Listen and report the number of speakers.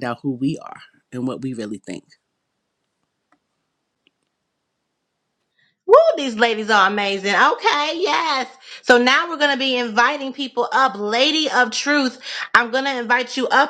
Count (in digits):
2